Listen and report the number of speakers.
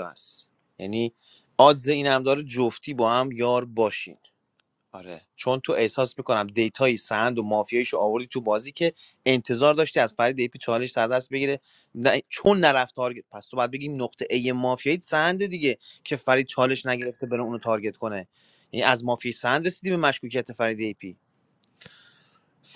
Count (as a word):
one